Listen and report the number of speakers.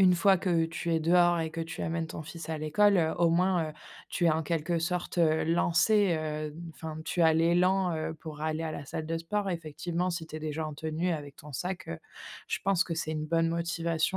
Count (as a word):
one